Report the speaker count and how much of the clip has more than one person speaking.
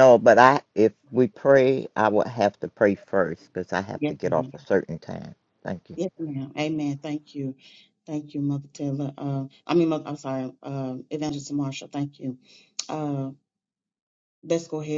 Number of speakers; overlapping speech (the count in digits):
2, about 4%